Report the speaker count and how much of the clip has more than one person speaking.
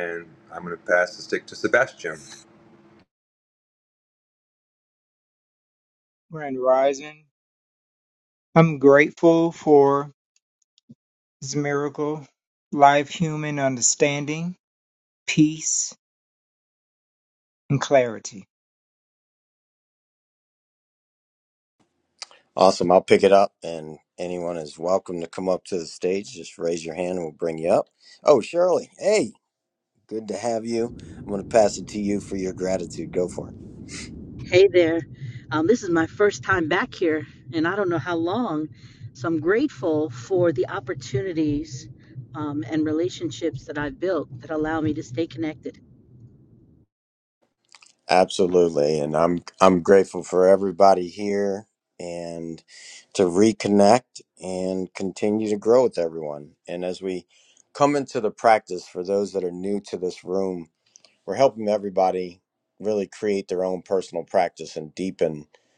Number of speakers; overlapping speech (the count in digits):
4, no overlap